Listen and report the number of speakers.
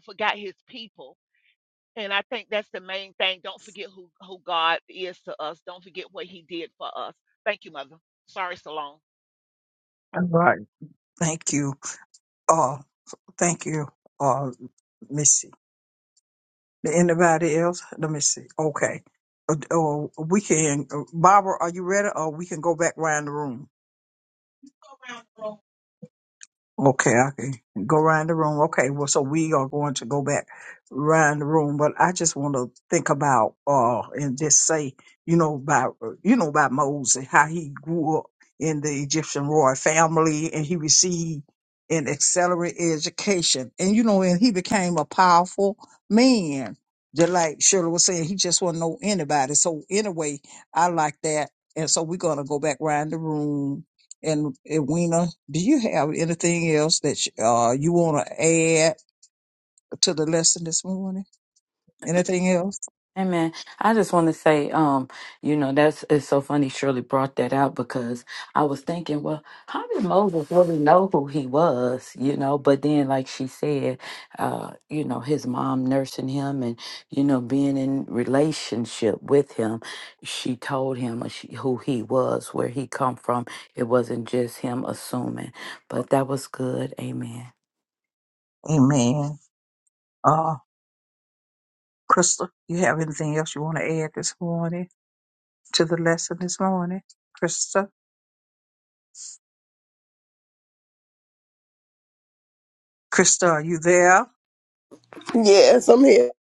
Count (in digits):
4